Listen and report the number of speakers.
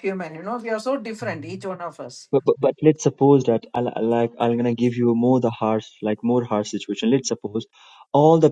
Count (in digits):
2